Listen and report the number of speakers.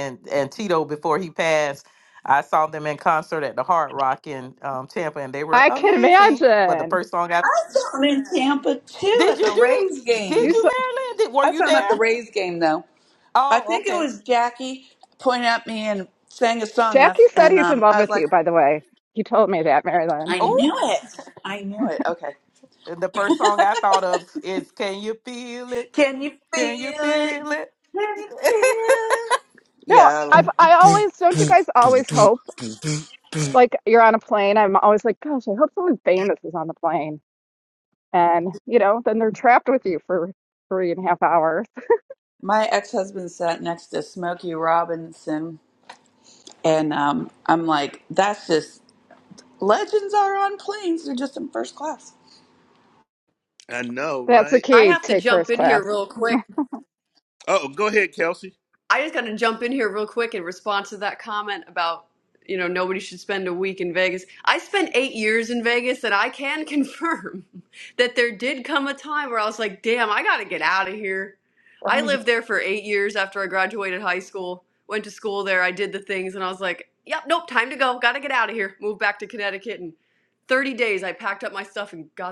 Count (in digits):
5